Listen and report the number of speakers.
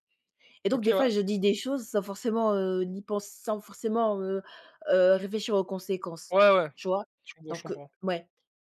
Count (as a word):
two